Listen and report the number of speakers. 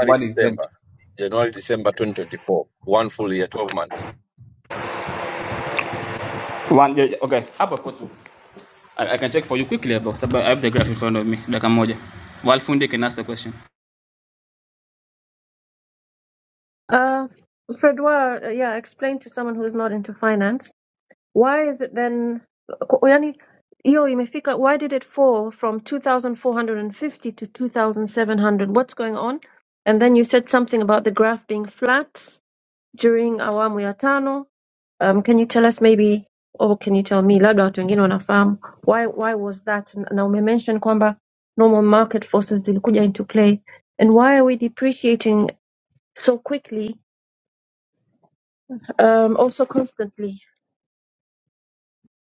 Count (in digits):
3